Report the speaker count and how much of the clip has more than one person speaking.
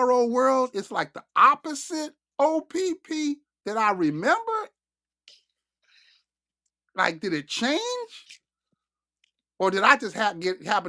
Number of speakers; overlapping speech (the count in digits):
1, no overlap